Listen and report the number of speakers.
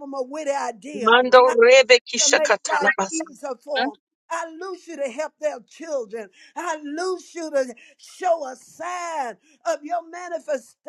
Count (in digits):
2